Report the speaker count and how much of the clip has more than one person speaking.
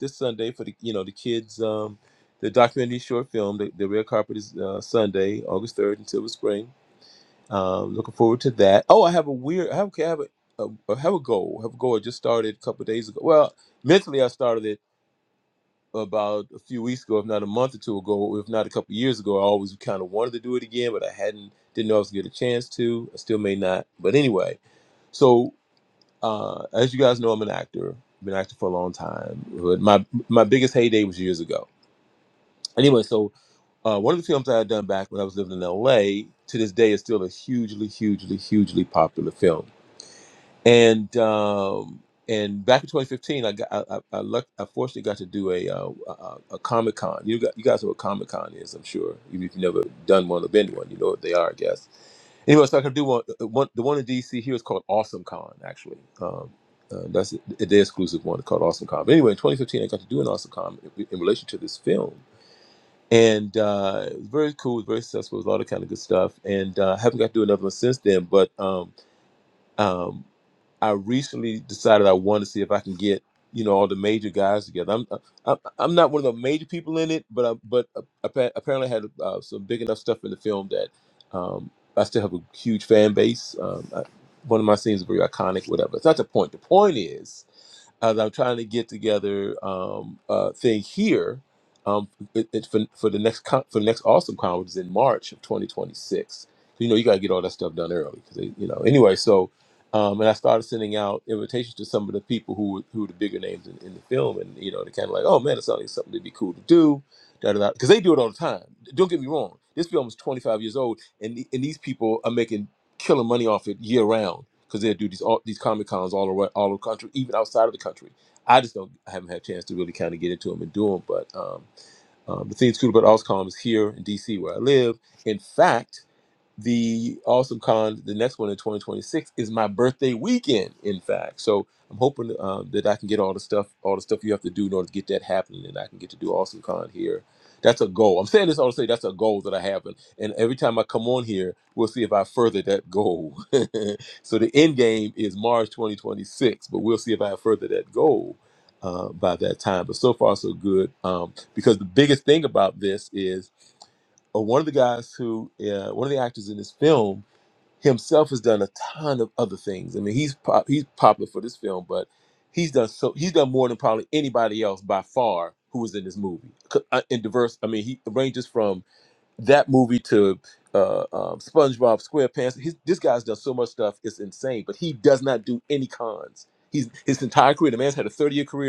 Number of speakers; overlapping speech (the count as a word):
one, no overlap